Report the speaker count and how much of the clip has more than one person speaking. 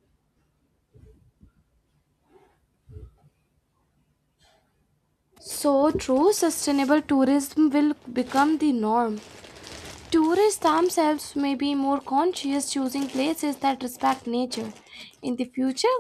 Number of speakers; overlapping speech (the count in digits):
1, no overlap